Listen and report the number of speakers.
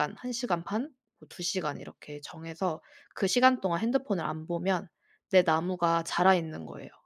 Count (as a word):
one